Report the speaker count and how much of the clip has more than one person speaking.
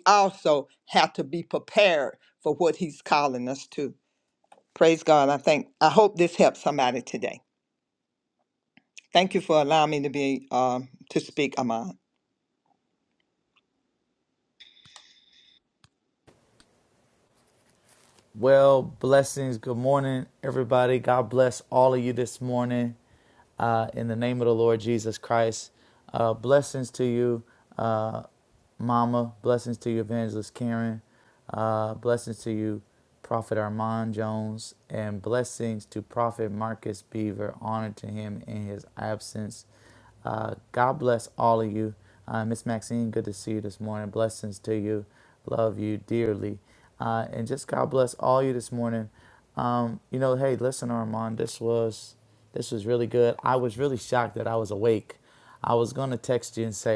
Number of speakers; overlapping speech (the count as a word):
two, no overlap